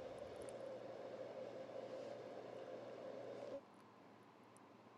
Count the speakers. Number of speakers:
0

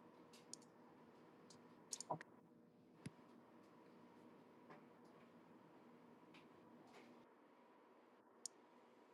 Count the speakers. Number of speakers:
0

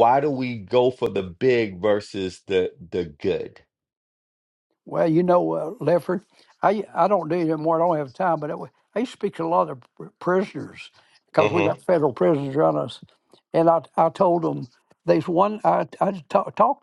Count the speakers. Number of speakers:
2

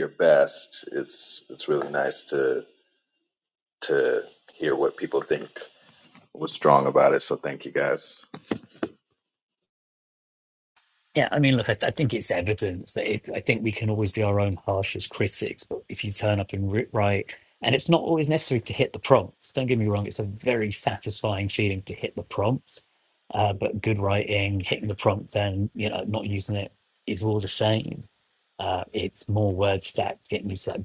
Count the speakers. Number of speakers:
2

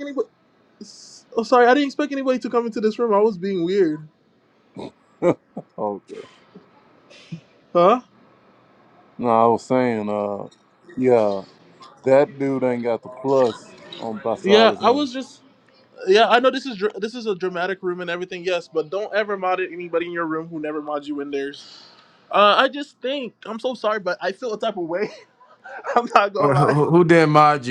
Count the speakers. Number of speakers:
3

